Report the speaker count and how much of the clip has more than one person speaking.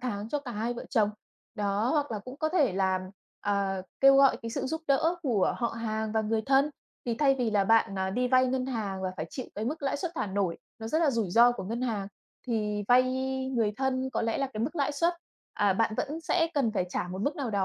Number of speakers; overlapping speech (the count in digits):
1, no overlap